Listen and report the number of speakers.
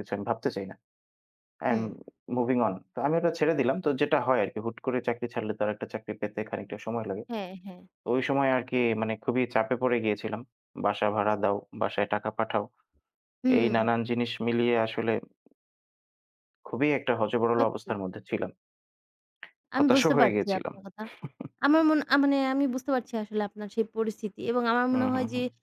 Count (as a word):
two